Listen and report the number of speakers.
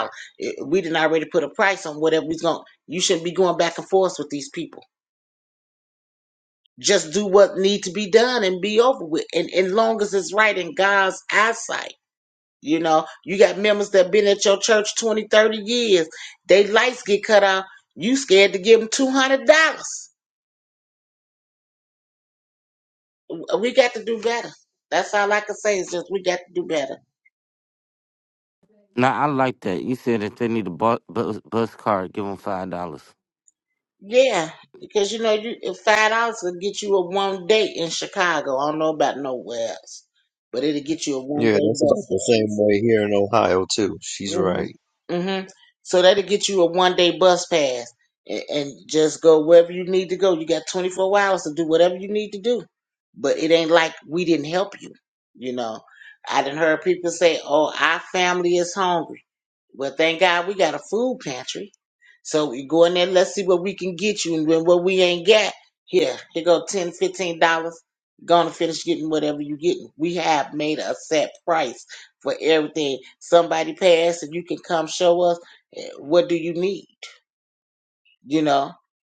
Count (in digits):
3